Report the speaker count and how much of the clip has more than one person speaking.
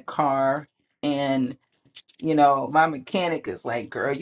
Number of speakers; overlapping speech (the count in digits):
1, no overlap